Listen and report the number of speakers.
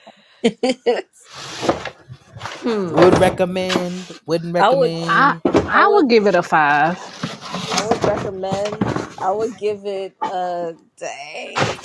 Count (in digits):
3